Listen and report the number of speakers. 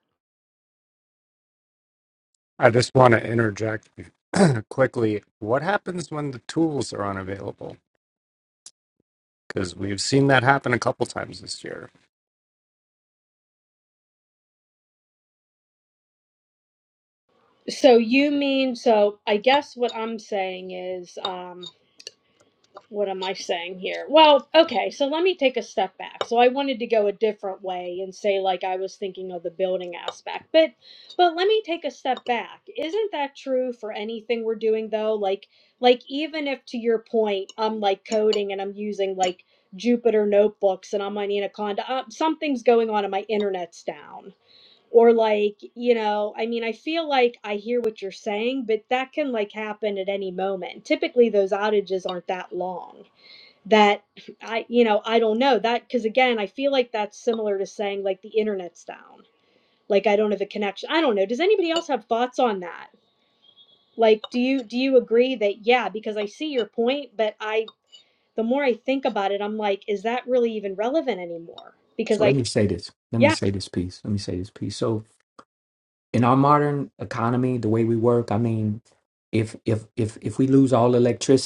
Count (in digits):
3